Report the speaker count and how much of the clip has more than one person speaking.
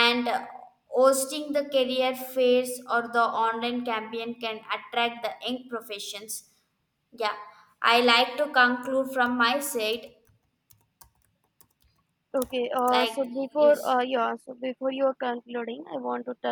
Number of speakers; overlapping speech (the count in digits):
2, about 3%